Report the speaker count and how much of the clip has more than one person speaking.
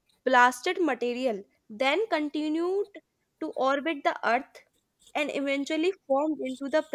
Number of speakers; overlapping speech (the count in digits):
1, no overlap